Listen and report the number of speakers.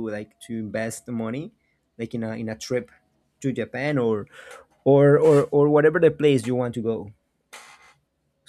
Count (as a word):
one